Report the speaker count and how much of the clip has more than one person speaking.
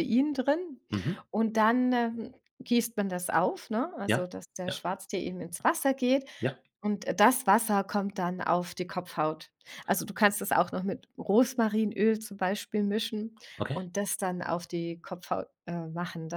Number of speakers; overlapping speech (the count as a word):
two, about 2%